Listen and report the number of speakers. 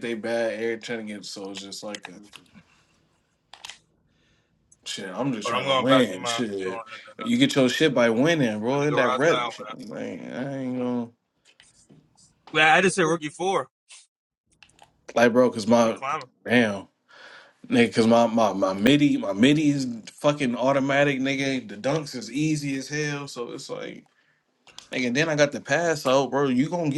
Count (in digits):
2